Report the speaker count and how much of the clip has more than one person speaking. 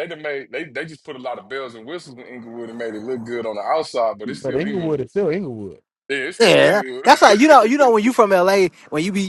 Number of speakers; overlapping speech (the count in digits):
3, about 15%